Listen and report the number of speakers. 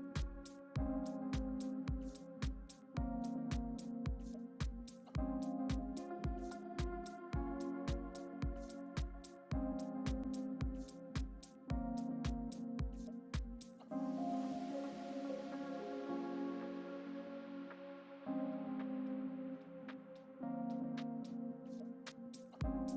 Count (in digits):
0